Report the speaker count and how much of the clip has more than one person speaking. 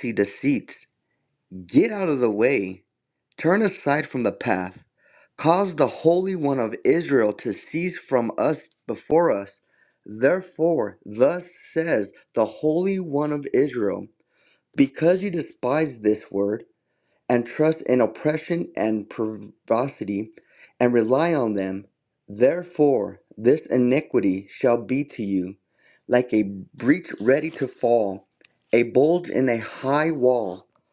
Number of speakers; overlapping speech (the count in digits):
1, no overlap